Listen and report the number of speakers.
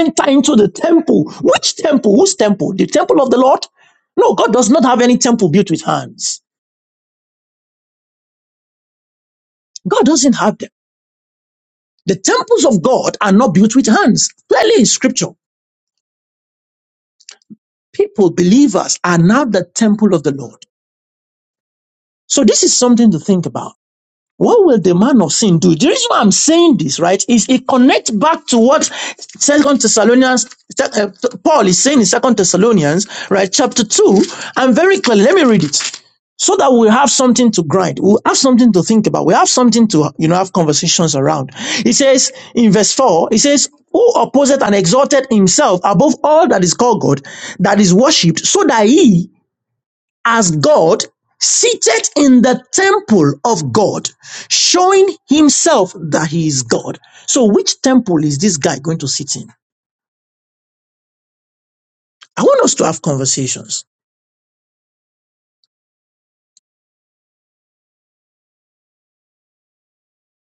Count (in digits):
1